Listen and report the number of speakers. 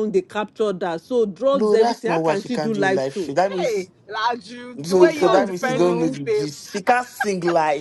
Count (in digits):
3